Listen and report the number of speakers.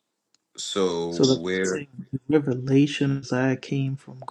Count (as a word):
two